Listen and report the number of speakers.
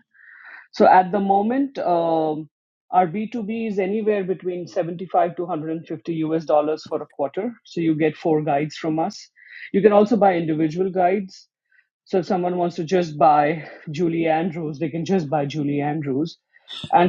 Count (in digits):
1